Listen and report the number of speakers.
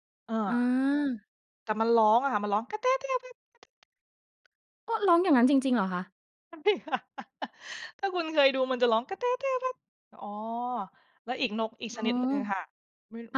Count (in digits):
2